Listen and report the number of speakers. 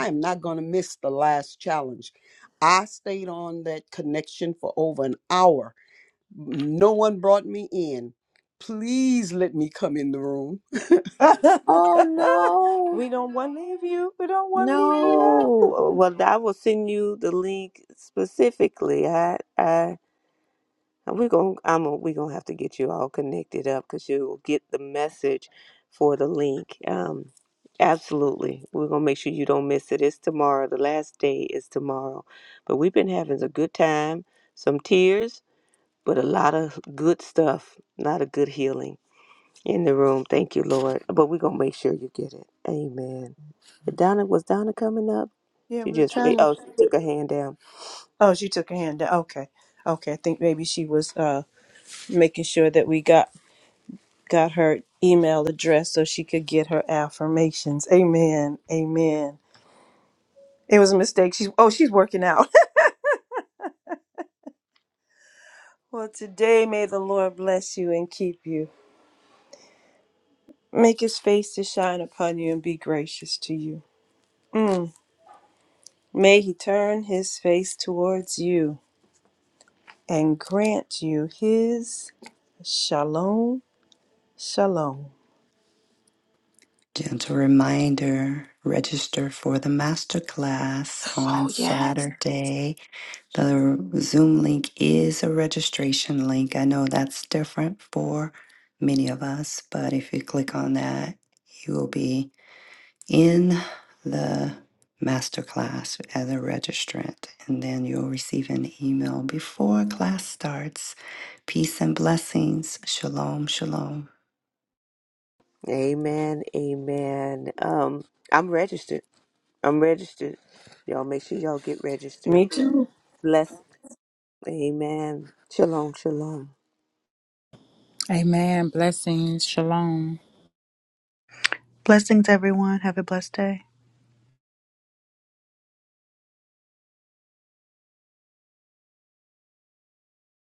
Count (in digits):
6